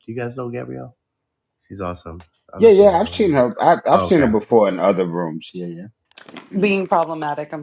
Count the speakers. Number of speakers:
three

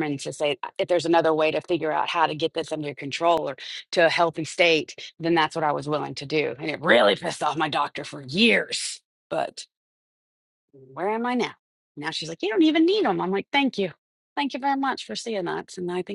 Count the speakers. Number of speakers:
one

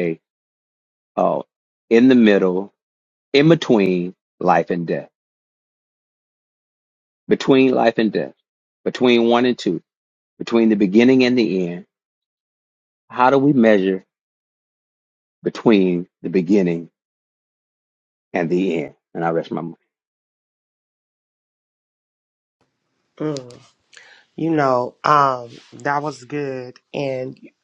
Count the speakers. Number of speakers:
two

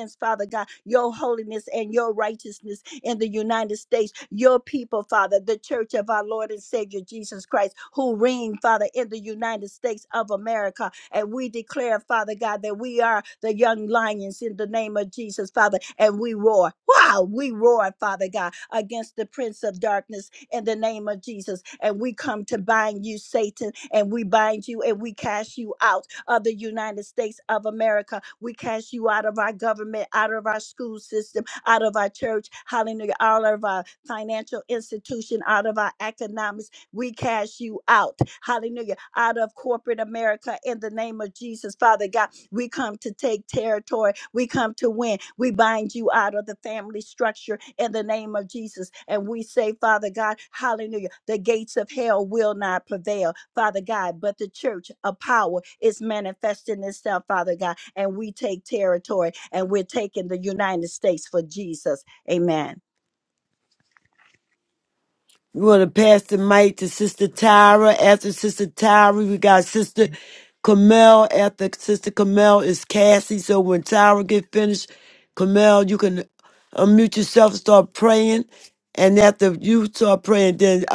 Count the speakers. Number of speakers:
two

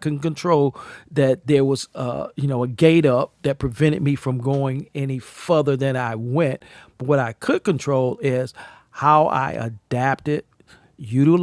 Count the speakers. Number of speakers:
one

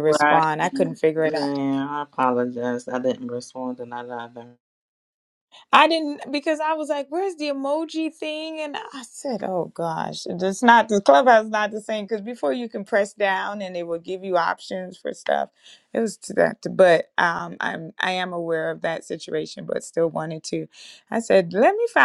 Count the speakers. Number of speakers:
two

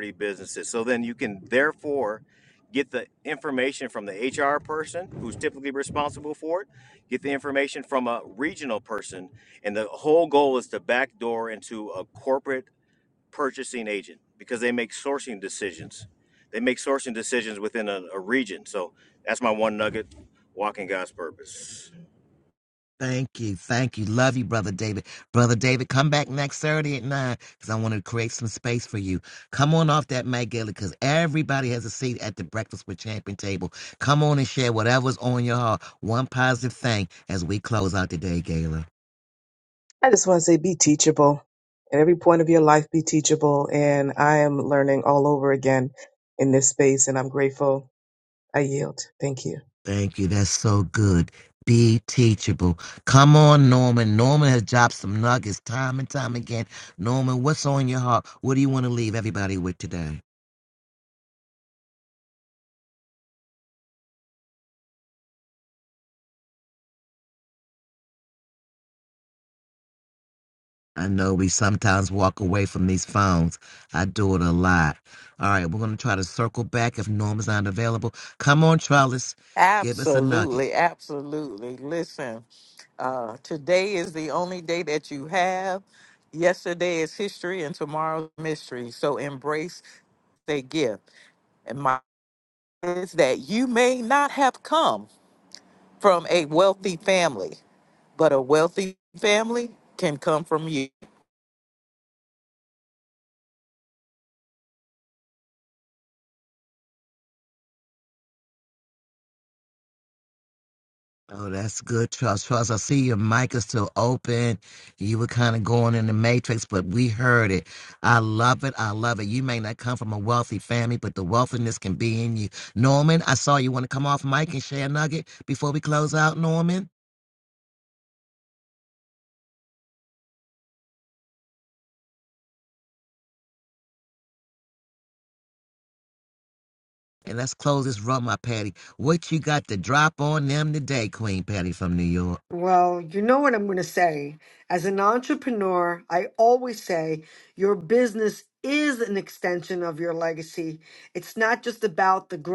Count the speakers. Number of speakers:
five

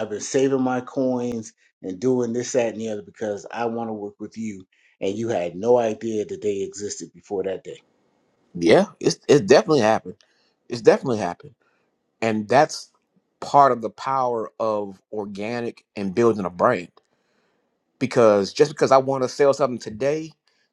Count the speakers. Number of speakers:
two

